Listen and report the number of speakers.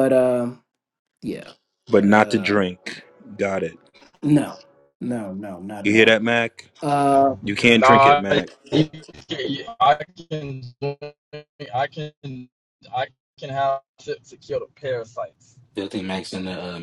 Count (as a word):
four